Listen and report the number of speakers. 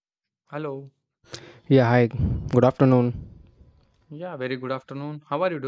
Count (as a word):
two